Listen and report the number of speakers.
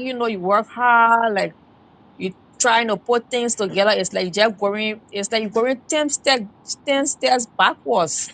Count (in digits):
1